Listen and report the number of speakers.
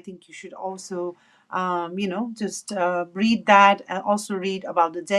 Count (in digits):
1